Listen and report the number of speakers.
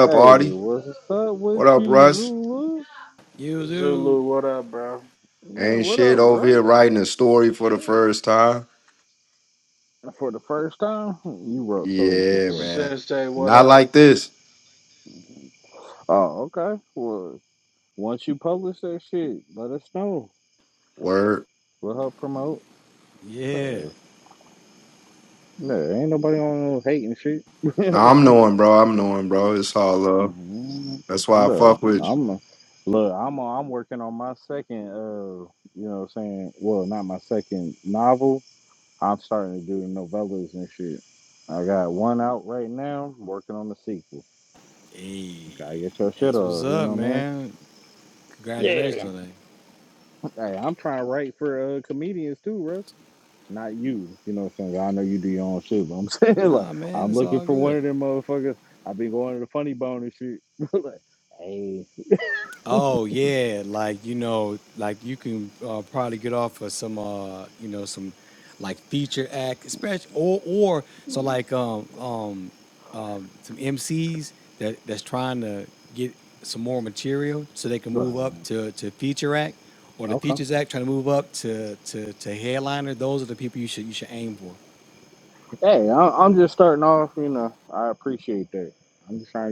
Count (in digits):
4